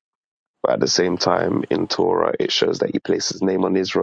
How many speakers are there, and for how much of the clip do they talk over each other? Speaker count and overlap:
1, no overlap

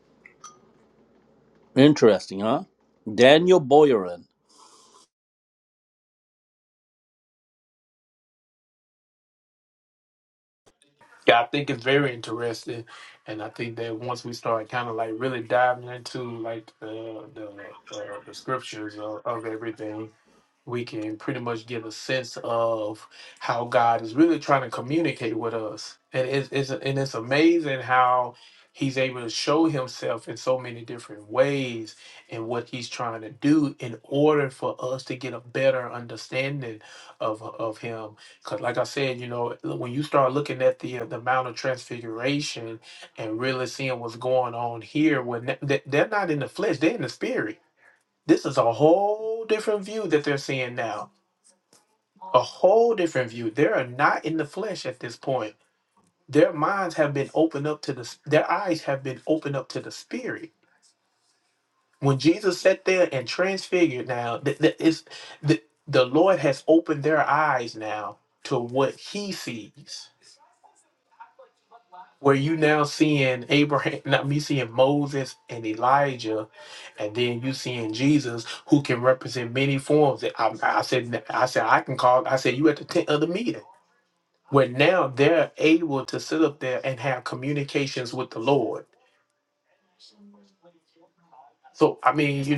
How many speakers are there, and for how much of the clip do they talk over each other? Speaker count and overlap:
2, no overlap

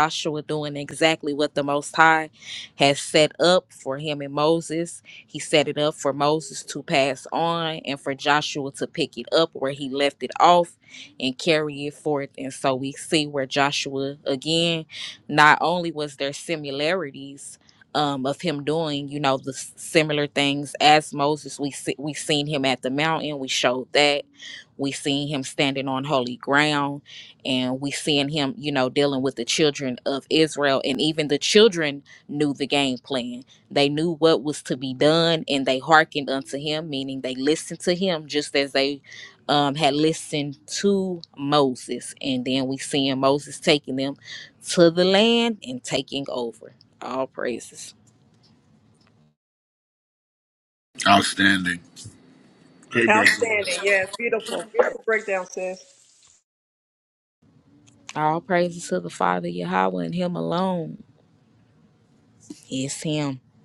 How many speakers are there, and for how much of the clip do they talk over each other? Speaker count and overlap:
3, about 1%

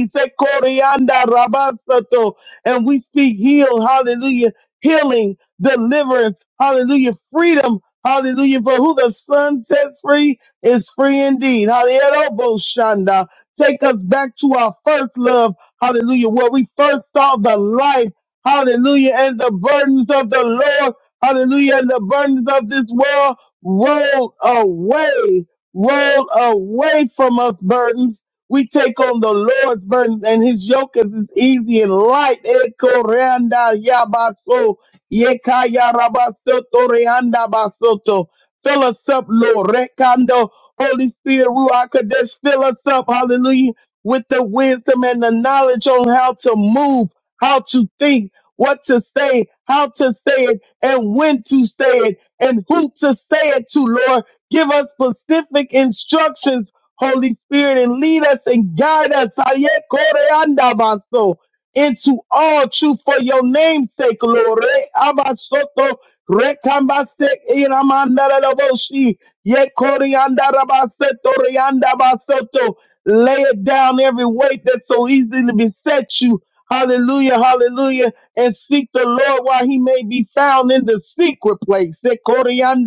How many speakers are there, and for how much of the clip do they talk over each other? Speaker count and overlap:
1, no overlap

